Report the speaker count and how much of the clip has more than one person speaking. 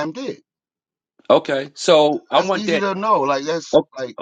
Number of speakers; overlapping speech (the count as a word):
two, about 12%